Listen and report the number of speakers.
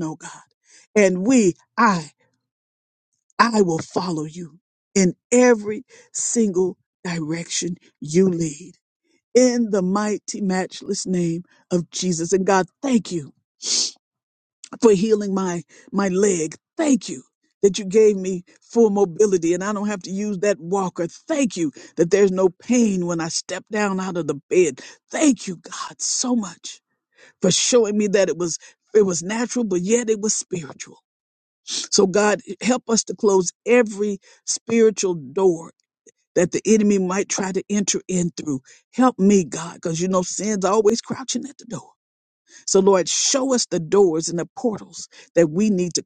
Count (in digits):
1